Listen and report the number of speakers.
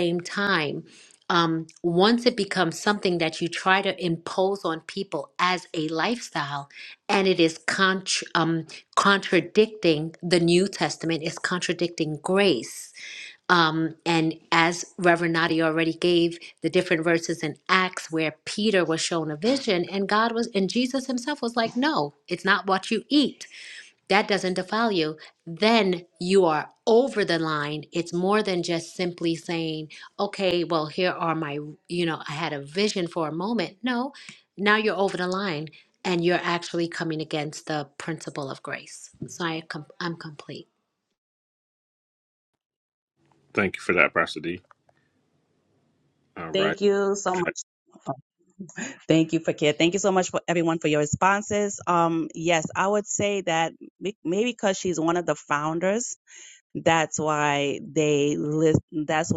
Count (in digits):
3